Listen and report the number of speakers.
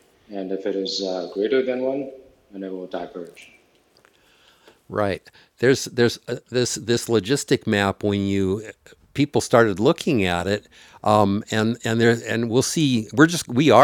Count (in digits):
2